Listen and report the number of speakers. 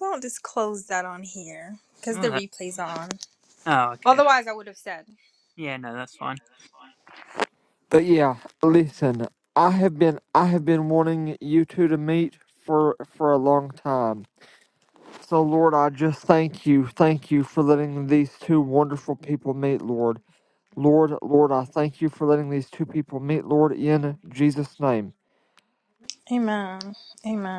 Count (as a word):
three